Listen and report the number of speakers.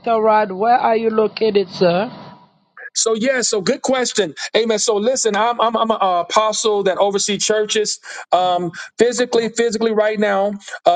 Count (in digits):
2